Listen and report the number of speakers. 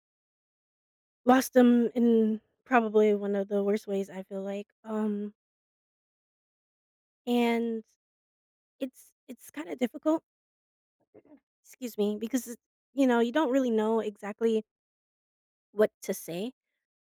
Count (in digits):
1